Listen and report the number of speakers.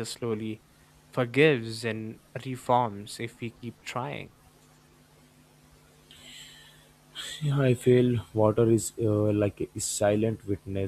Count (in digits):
2